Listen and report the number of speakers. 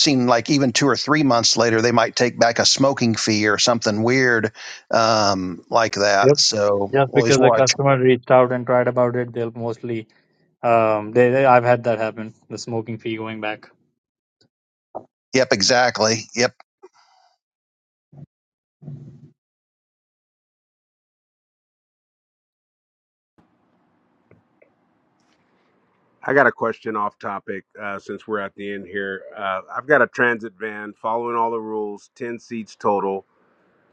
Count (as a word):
three